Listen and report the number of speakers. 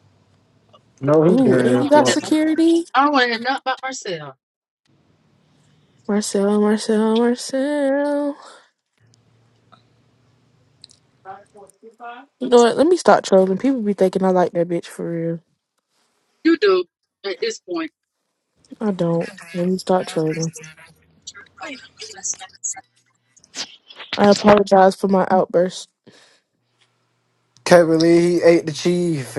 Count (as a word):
three